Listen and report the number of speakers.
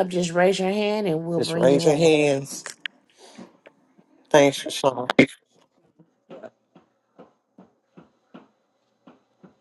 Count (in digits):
2